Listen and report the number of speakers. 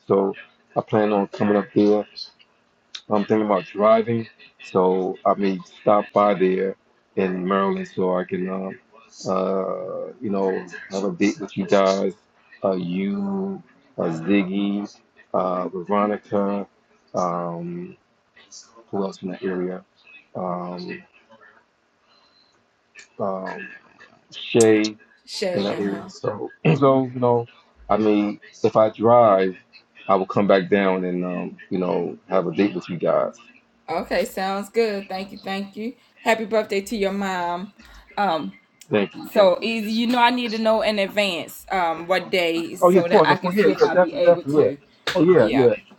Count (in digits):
2